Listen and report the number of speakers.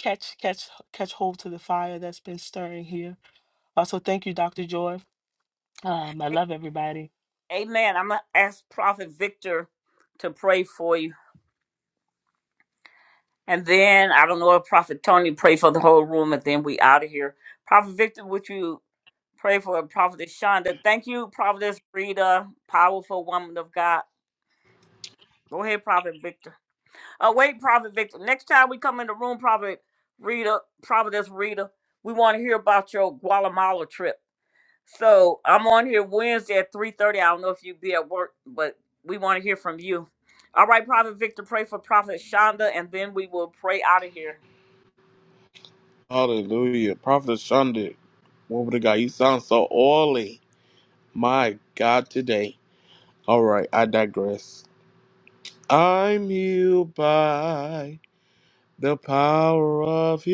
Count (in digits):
3